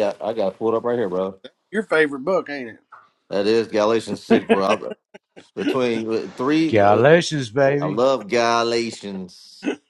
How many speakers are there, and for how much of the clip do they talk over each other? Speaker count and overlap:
three, about 5%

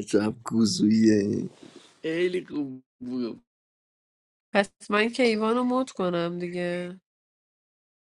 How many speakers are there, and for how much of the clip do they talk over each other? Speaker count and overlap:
three, no overlap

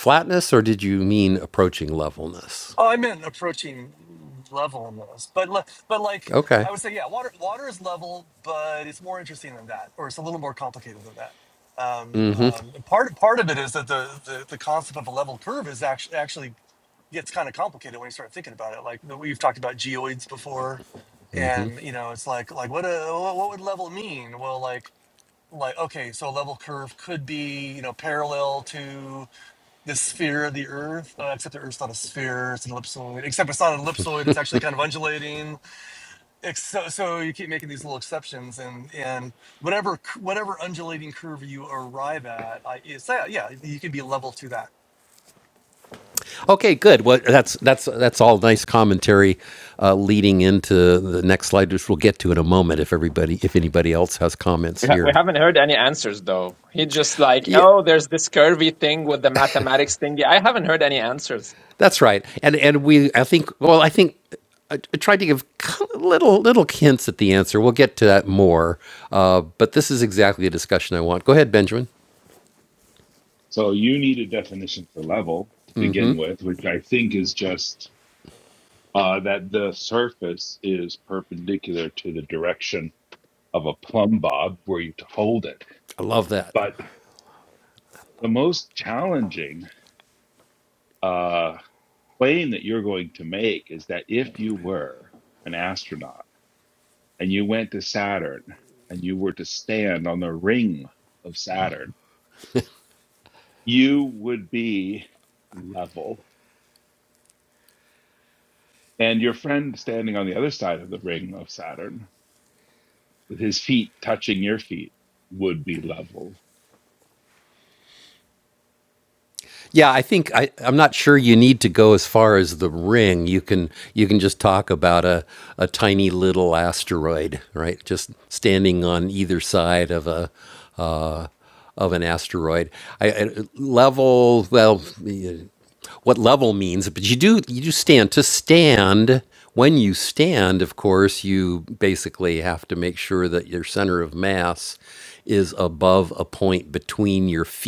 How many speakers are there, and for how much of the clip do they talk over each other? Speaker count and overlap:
four, about 1%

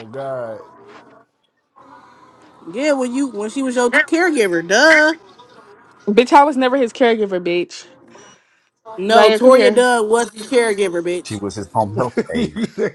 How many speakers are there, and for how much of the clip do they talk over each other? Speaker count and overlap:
four, about 8%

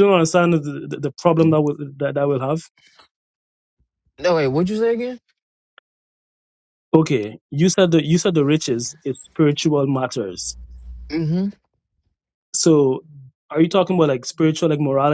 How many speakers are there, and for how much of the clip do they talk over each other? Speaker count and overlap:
two, no overlap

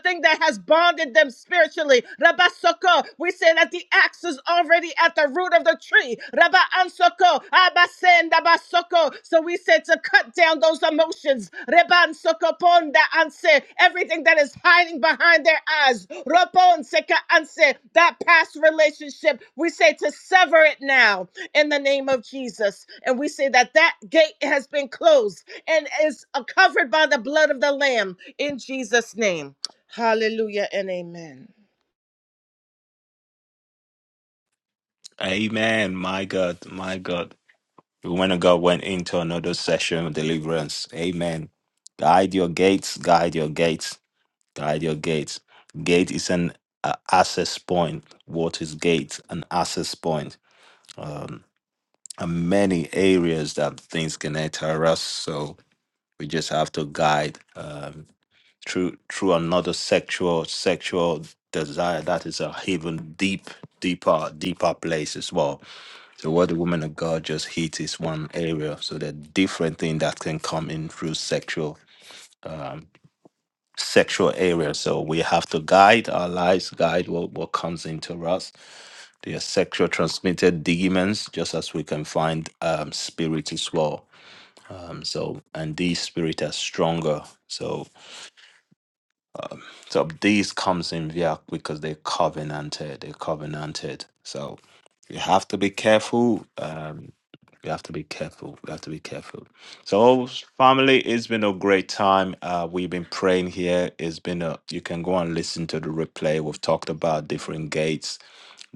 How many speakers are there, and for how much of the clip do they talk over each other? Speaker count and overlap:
two, no overlap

